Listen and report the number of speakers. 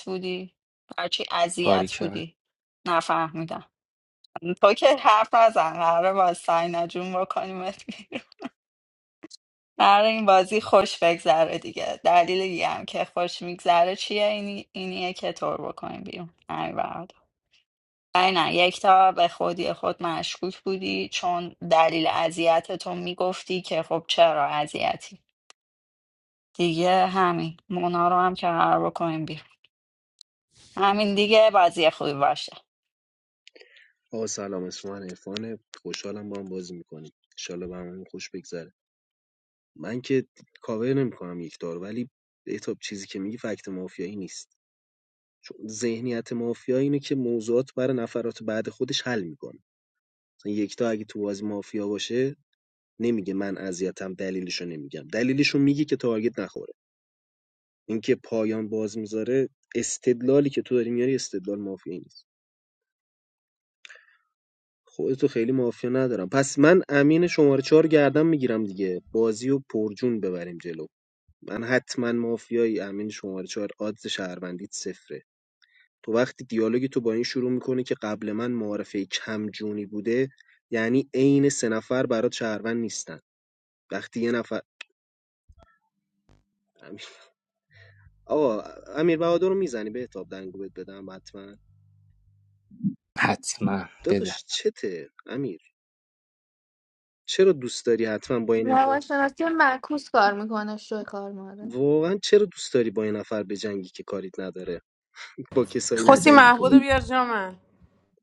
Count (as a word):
five